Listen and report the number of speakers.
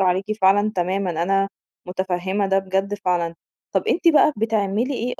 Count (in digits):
1